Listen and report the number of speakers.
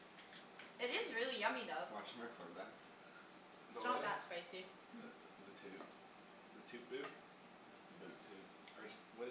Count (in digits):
3